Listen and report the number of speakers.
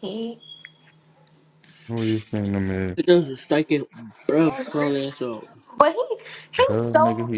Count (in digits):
3